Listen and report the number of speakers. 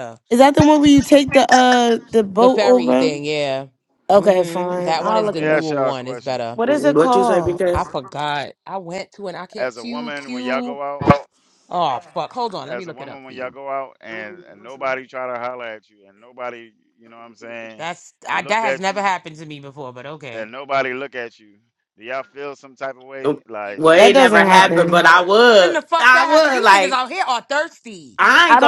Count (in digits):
4